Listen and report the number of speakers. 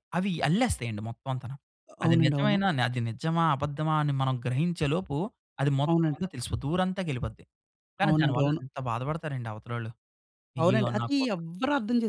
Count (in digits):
2